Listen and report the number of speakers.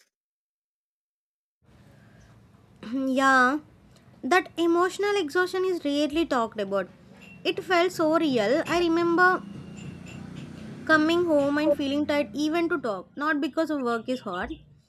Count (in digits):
1